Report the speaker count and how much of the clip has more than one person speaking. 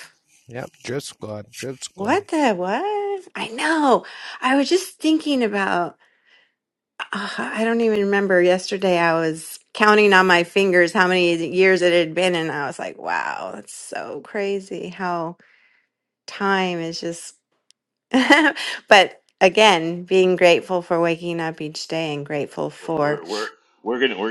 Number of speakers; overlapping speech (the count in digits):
3, about 3%